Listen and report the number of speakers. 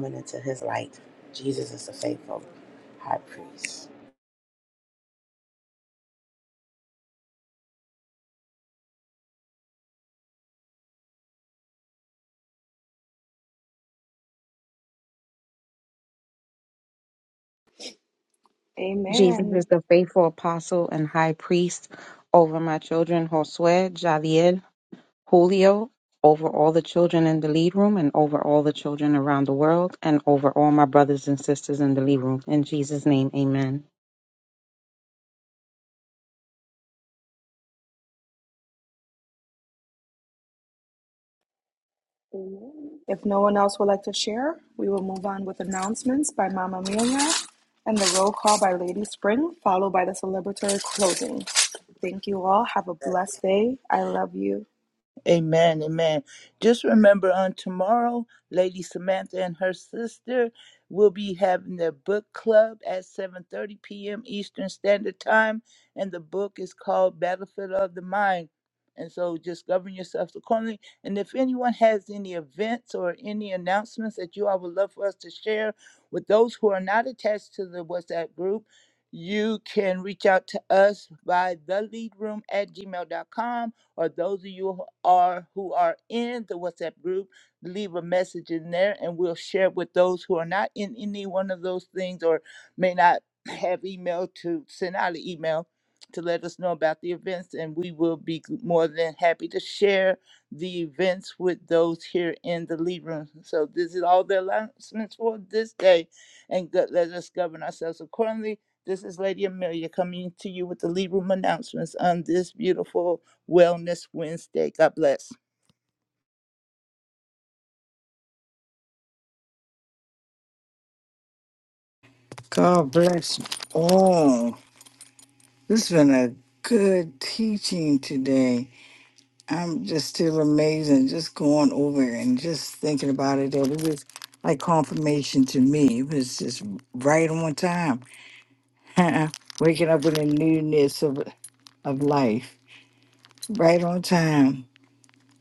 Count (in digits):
5